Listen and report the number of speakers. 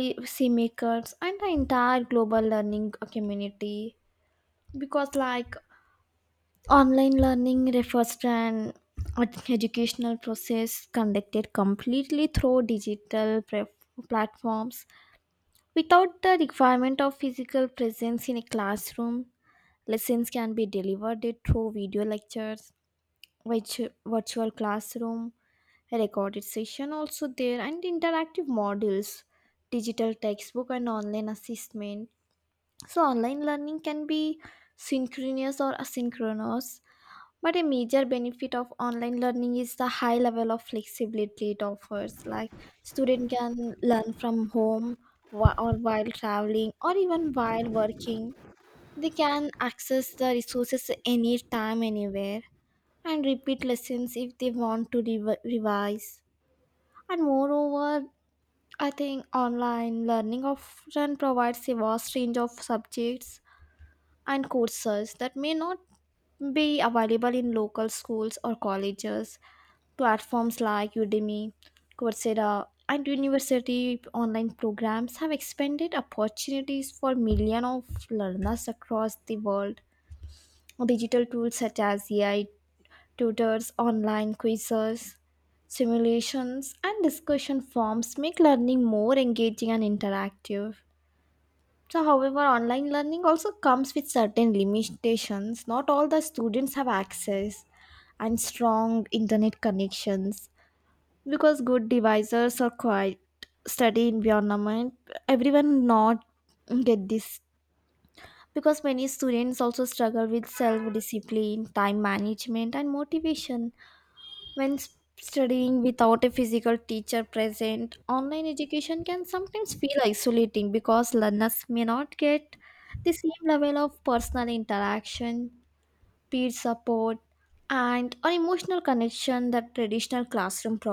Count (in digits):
1